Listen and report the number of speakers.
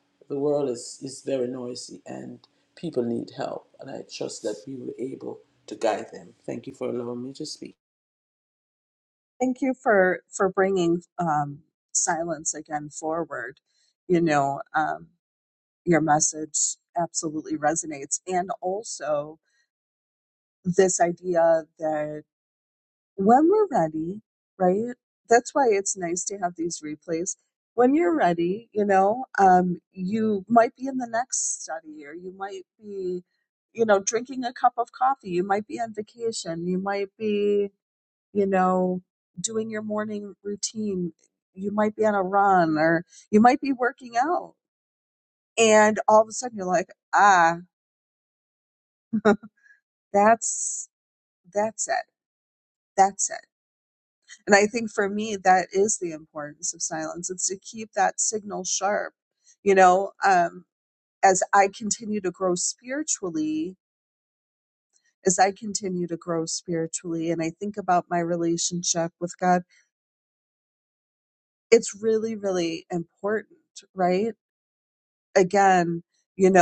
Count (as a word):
two